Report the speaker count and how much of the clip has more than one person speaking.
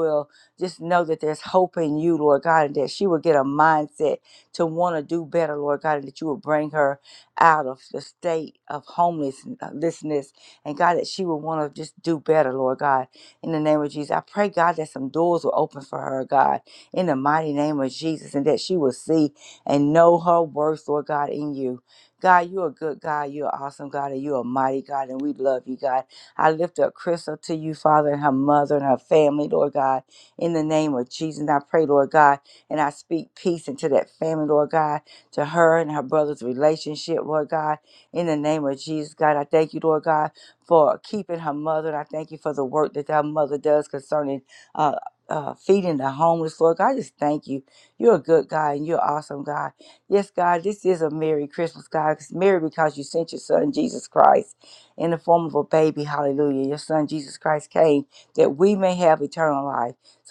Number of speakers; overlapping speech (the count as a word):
one, no overlap